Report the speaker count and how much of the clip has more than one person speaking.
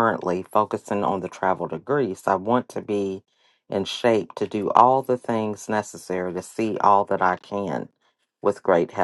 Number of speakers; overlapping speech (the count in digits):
1, no overlap